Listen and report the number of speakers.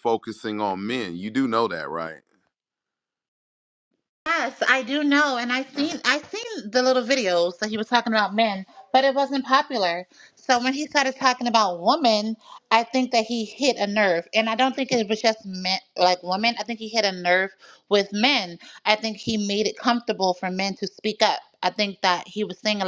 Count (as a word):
two